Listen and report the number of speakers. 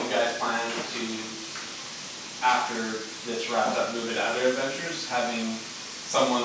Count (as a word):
one